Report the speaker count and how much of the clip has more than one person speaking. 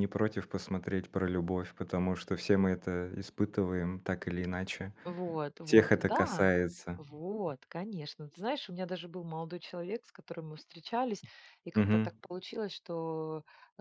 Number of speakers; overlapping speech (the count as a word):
two, about 8%